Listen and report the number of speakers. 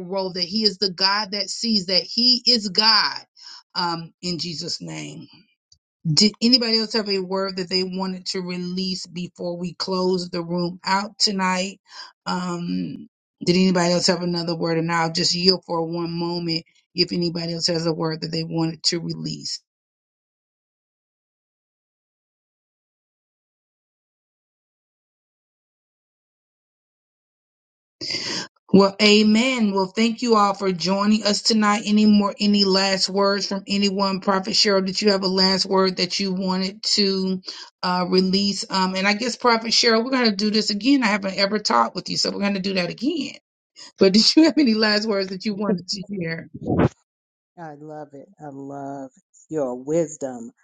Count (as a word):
two